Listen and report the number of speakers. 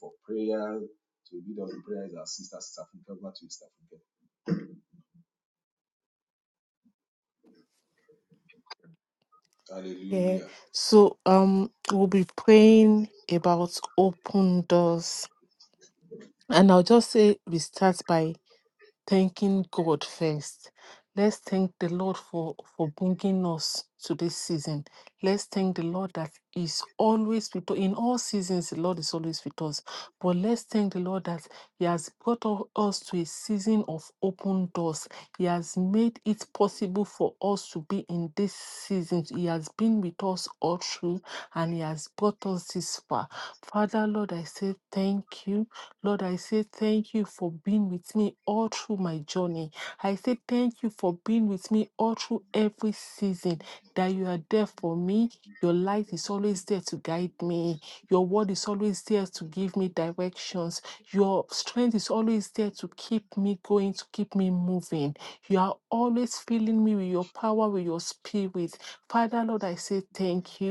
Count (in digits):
2